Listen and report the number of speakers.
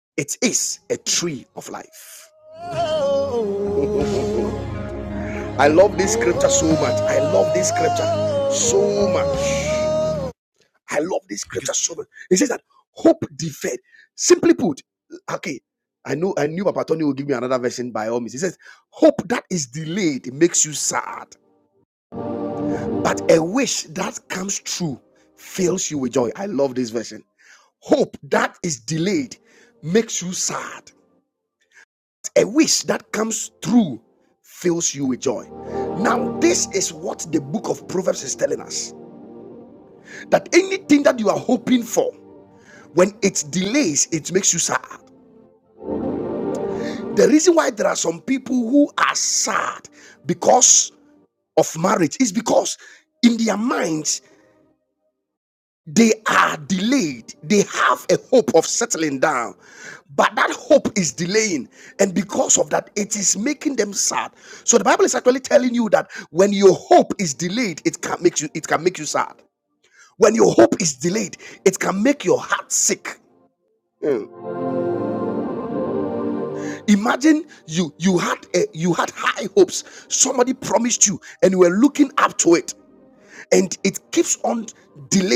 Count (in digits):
1